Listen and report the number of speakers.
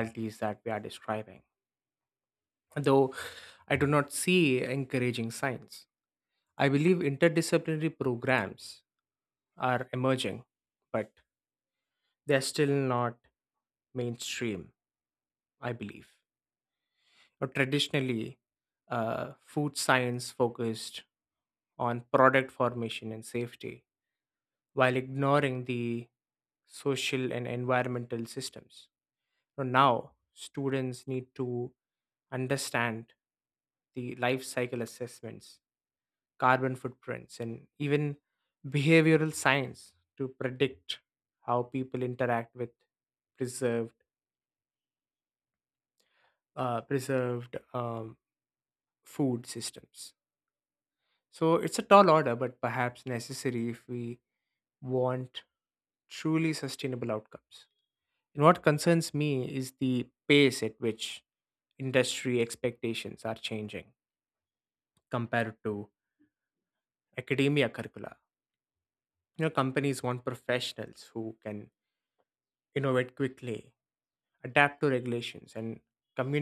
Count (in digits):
1